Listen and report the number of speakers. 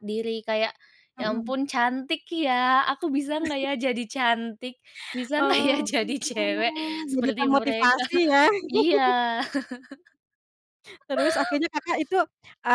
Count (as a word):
two